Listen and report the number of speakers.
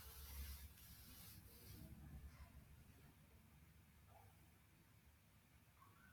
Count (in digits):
0